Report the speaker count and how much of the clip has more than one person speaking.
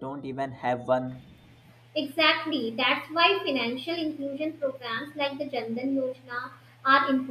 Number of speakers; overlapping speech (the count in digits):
2, no overlap